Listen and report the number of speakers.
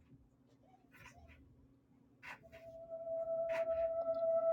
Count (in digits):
0